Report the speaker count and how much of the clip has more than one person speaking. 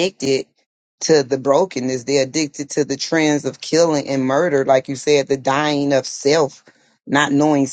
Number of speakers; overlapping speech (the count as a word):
one, no overlap